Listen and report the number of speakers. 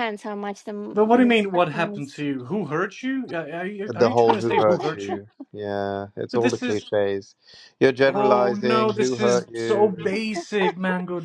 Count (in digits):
3